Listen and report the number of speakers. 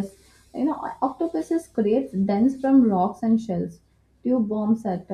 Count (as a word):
one